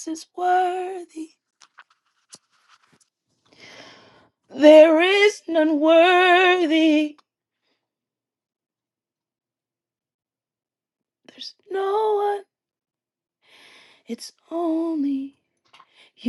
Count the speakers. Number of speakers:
1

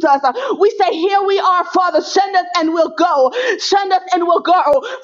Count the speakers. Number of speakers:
1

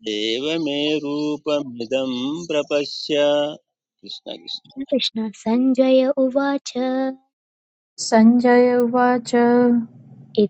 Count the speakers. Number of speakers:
3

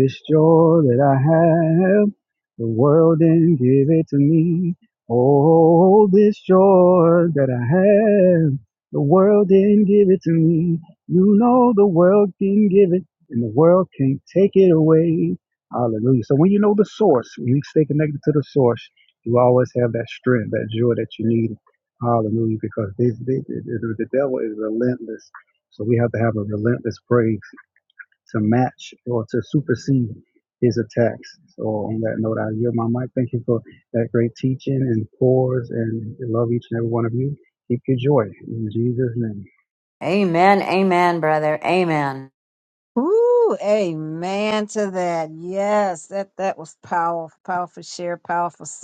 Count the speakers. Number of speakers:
3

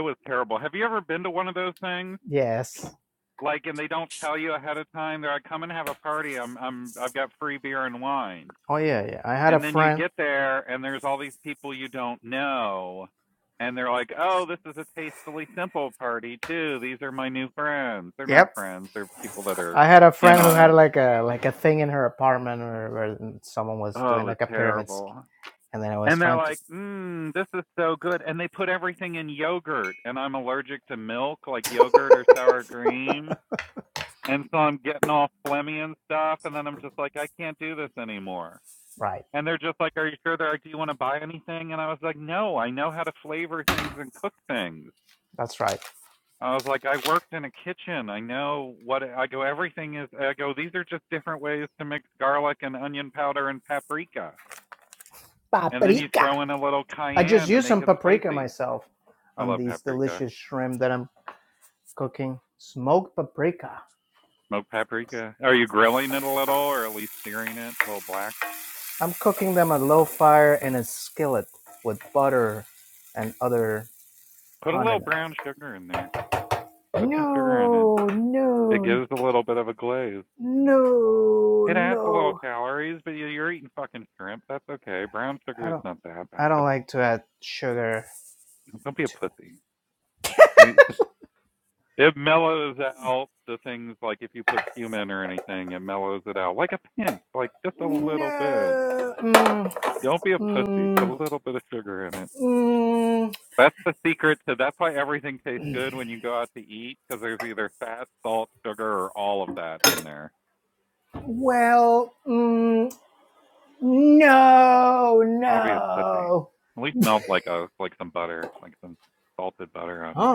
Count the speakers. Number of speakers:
2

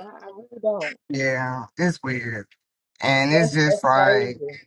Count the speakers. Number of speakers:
2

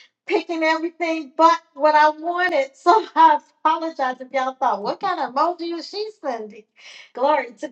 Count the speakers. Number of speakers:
1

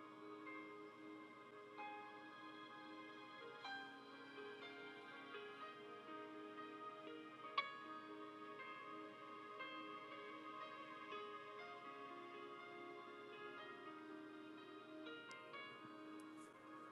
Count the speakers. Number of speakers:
0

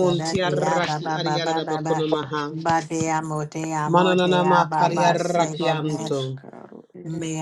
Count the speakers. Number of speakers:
3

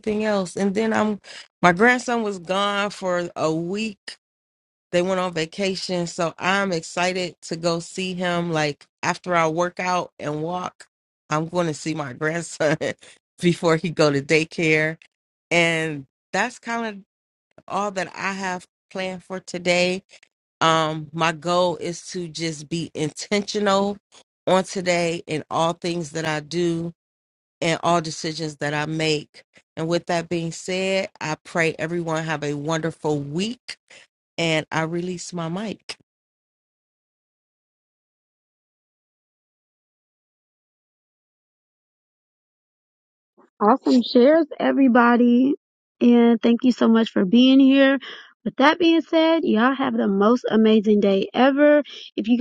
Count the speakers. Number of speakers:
2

